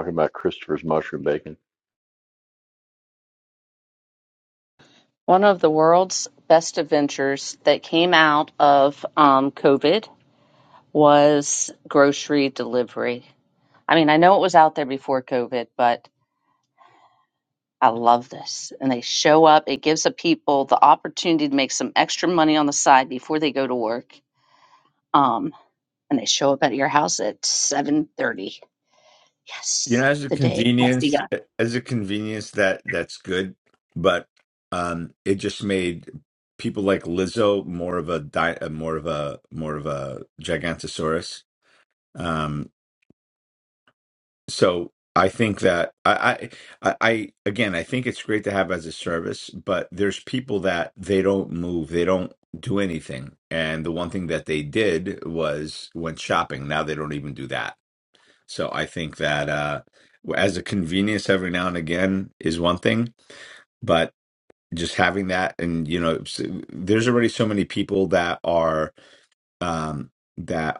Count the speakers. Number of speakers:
3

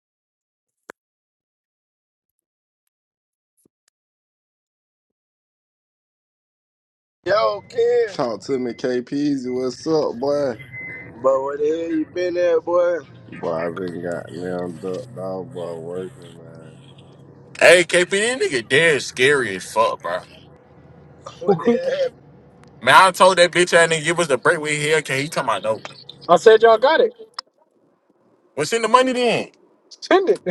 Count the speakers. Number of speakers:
4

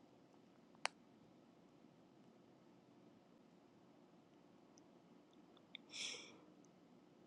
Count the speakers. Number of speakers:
0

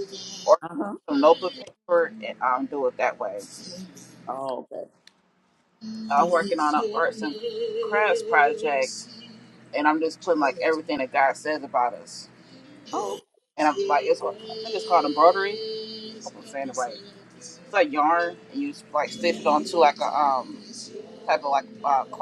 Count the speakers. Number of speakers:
2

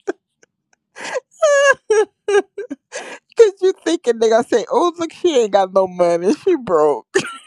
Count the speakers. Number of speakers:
1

